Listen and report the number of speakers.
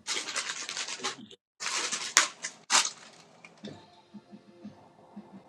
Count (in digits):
0